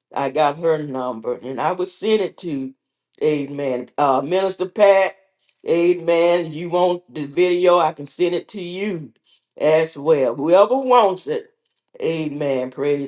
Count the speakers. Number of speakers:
one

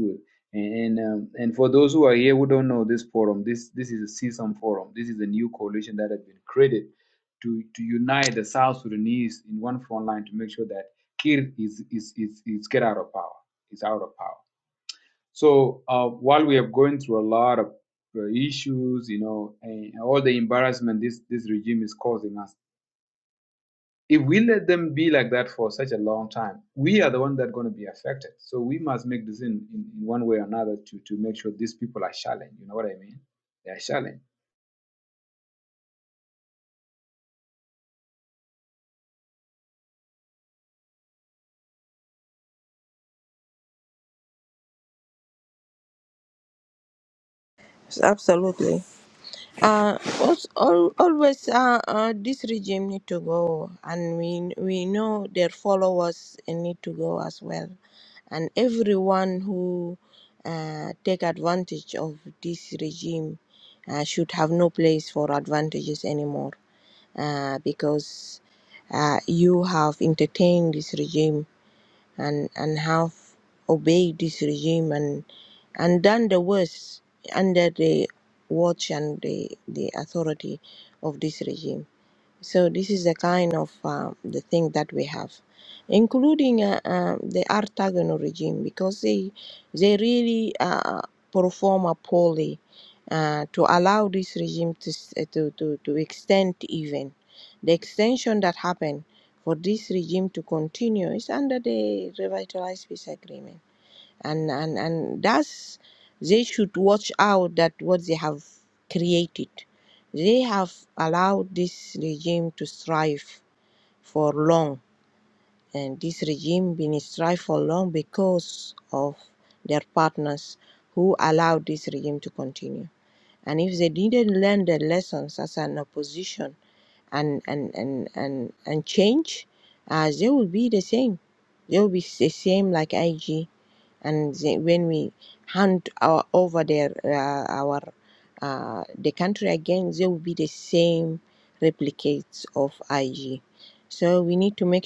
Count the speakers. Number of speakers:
two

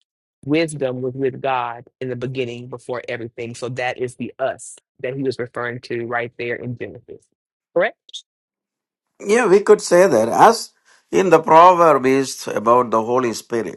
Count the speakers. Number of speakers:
two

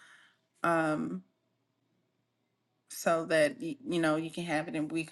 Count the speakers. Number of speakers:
one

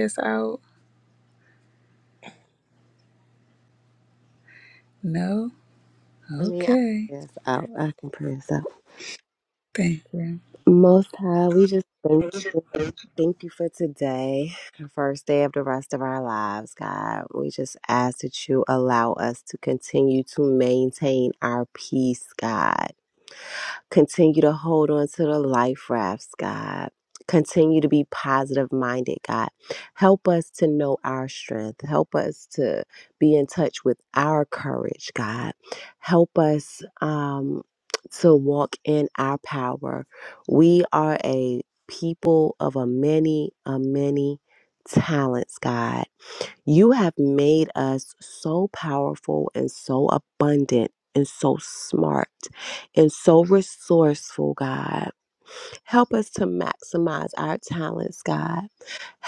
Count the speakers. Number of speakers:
two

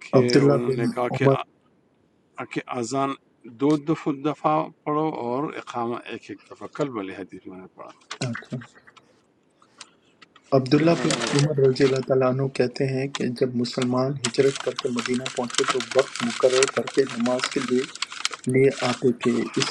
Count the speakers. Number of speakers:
two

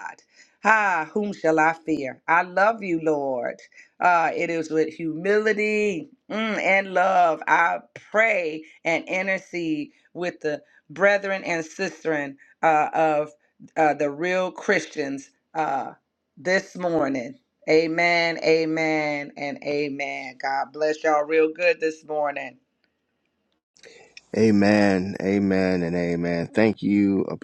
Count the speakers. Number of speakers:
two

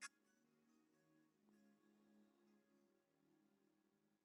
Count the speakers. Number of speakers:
zero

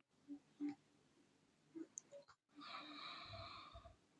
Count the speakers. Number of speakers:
zero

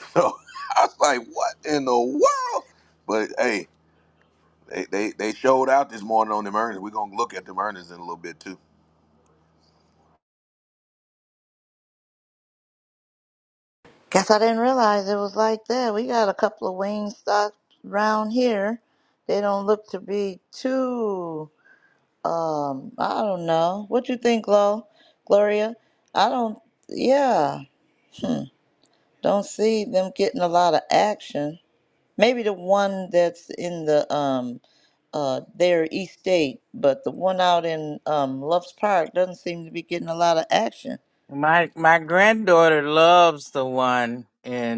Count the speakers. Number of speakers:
three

